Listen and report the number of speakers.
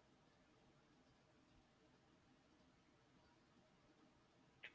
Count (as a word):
zero